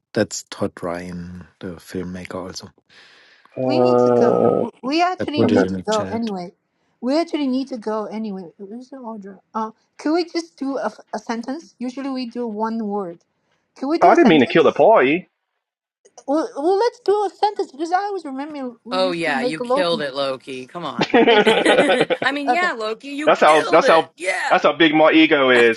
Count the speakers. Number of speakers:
four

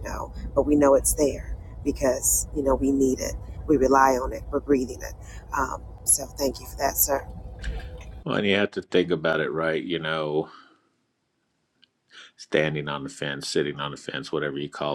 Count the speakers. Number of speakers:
two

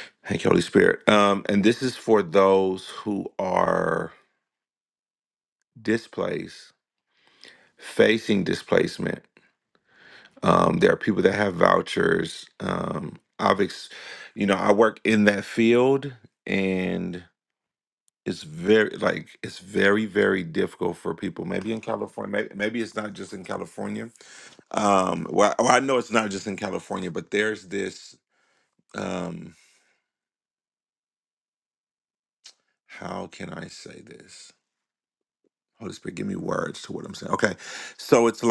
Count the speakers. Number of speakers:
one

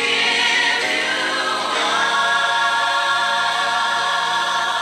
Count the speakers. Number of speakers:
zero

